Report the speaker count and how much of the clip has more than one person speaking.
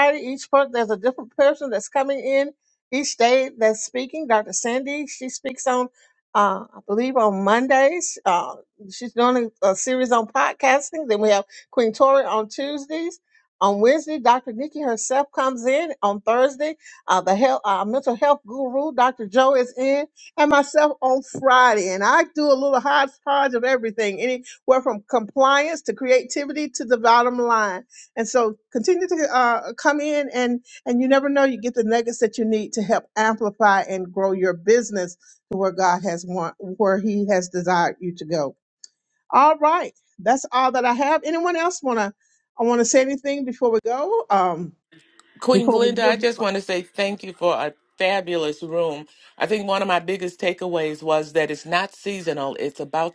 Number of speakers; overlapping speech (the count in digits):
2, about 1%